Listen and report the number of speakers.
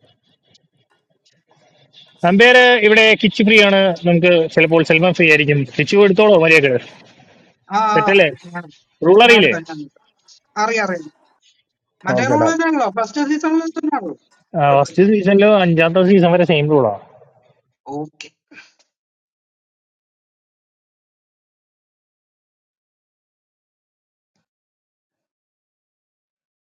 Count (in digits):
2